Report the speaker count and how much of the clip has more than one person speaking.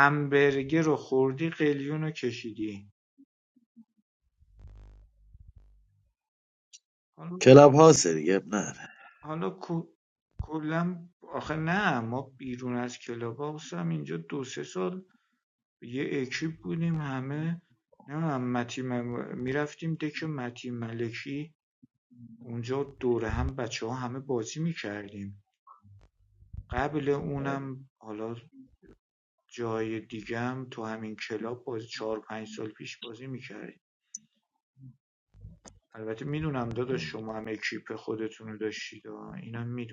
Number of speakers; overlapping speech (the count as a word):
two, no overlap